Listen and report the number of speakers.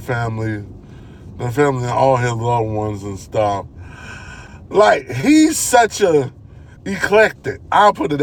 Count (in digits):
1